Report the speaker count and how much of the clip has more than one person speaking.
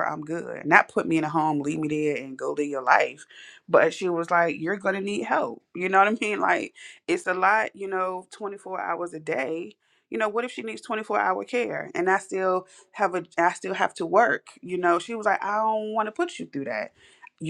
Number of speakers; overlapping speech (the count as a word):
one, no overlap